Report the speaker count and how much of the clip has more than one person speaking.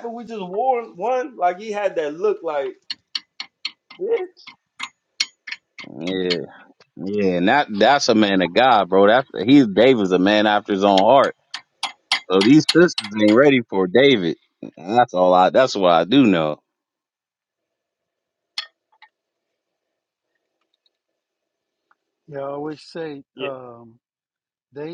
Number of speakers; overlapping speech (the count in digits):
3, about 1%